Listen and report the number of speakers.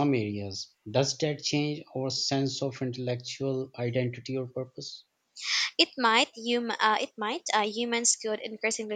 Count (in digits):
2